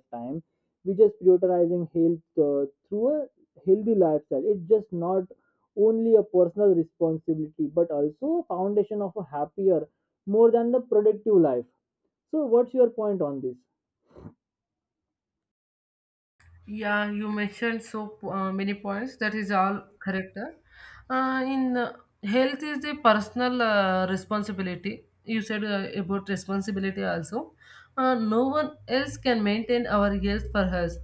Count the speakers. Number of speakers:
two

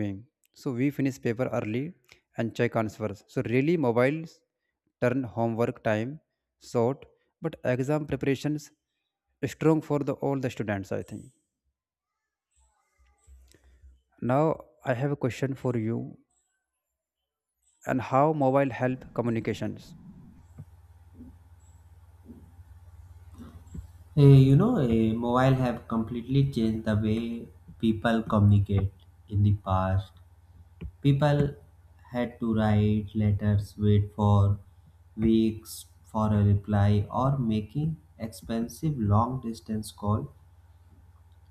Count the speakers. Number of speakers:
two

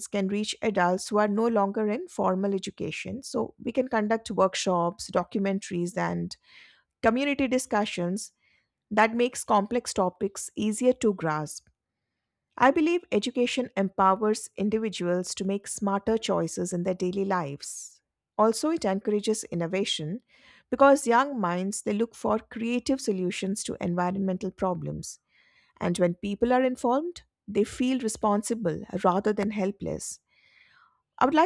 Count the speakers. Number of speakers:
one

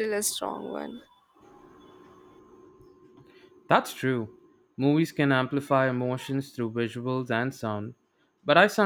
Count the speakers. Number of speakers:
two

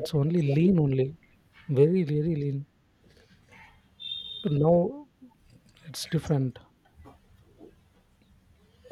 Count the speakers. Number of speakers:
one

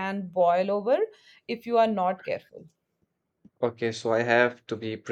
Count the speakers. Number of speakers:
two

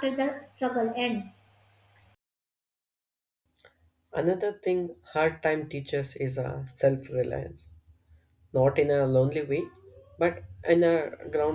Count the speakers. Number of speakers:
two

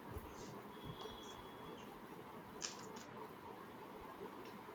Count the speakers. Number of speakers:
zero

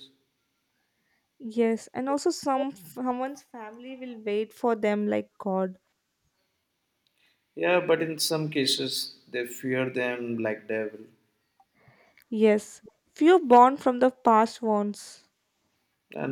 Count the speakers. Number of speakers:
two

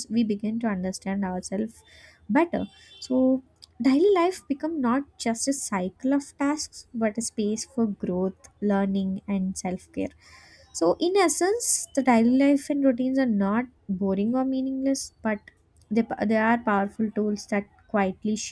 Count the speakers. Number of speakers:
one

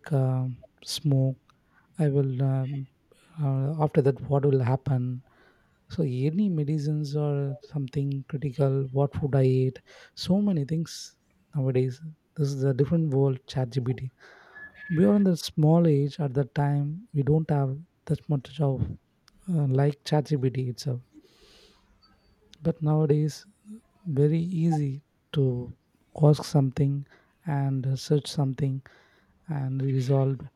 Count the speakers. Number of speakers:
one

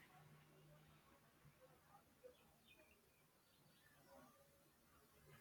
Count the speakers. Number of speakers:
zero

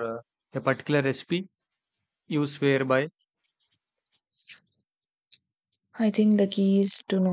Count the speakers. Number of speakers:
two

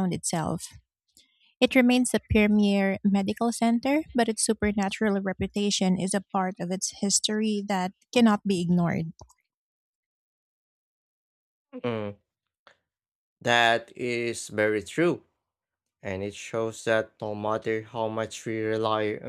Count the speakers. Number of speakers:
two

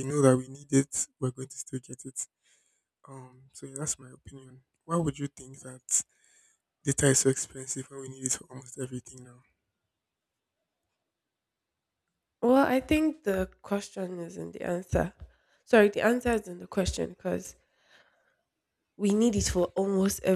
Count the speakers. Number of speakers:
two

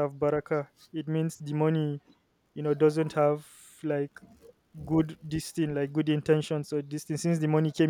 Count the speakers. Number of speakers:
one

